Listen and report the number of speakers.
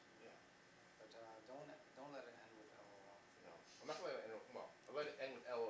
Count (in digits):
2